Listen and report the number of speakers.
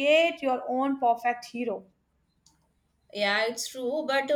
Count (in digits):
2